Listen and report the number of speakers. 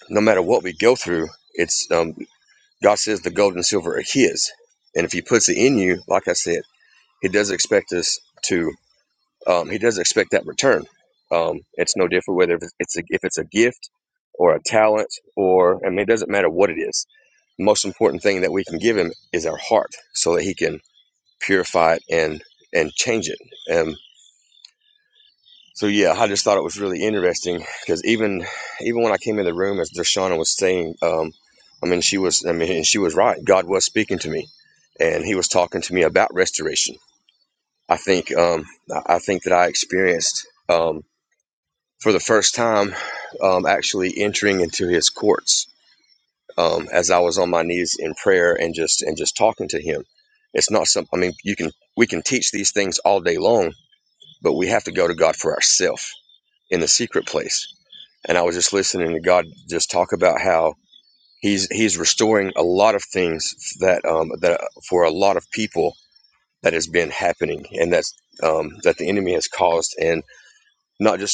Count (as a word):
one